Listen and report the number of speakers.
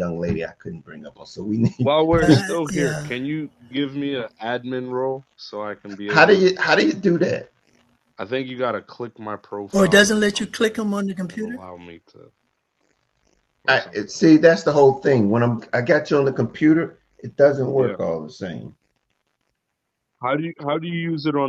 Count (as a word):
three